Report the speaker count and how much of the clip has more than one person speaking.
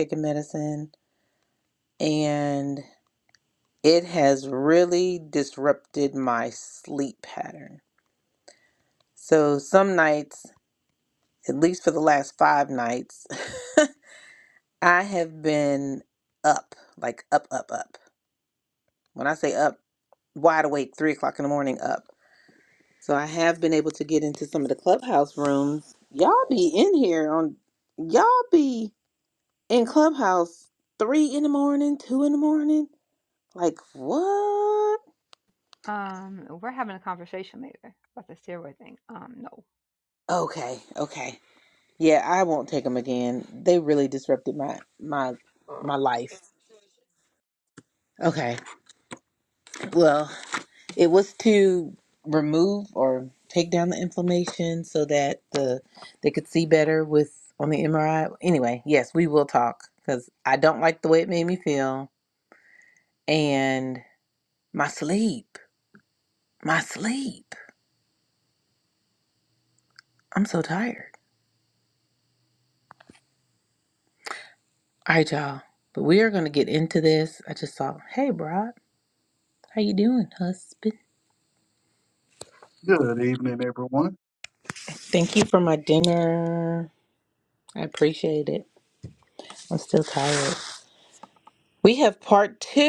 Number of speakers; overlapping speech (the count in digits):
3, no overlap